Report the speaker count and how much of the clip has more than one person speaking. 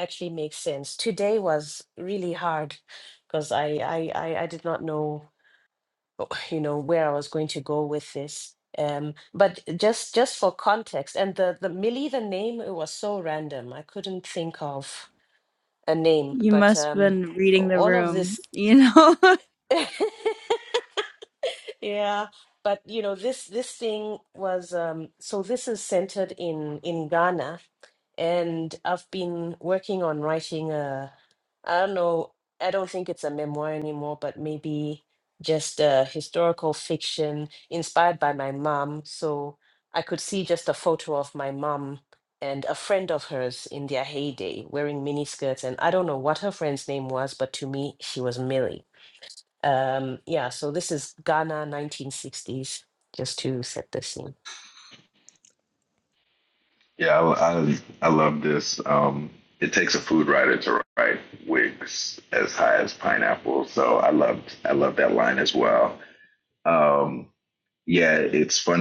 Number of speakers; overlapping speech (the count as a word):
three, about 2%